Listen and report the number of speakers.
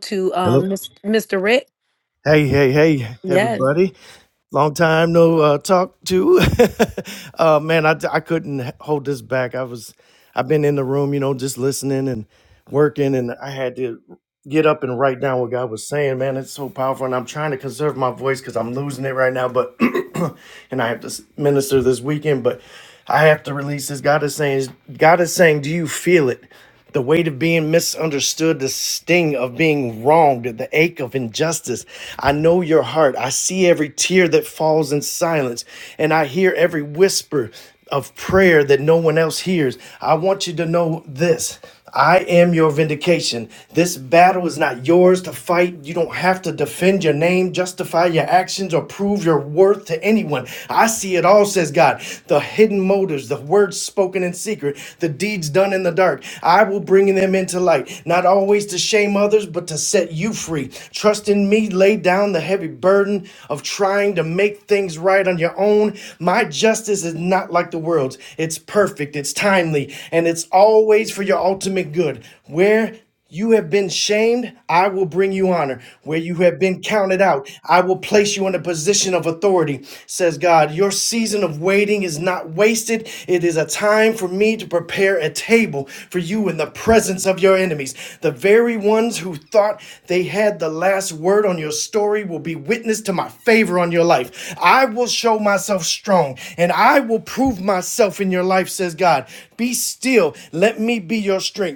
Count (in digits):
2